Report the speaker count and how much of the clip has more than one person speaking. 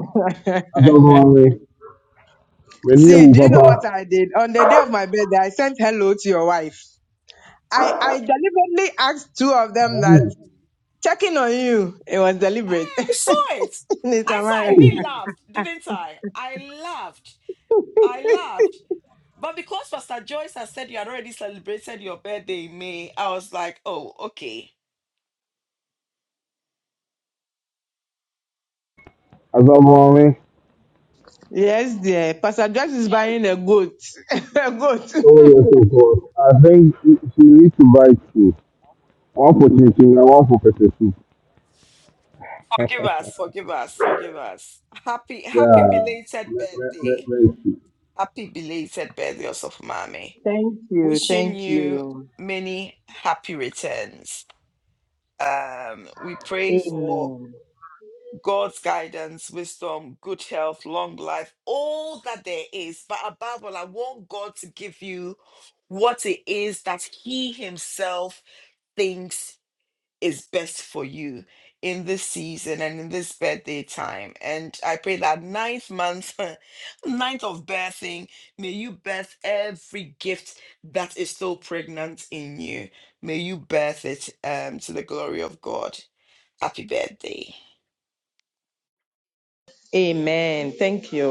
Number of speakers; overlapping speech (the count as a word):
three, about 5%